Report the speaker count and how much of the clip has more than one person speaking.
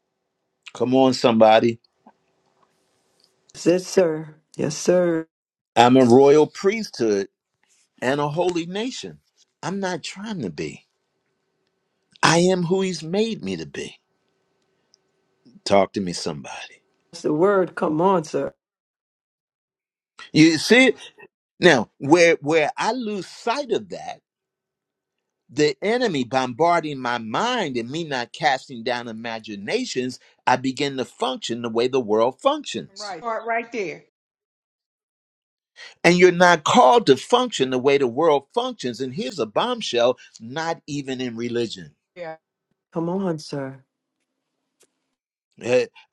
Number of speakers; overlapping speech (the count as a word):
three, no overlap